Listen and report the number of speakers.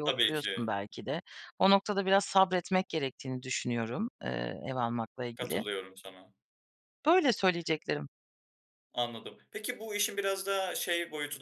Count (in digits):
2